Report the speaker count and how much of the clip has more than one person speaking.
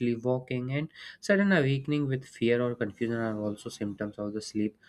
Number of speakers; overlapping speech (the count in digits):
1, no overlap